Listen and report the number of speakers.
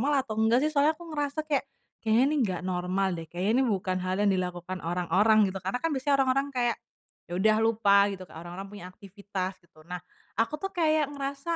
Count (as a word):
one